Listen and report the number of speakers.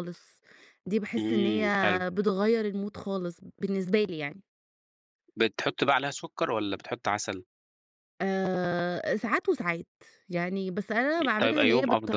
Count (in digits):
2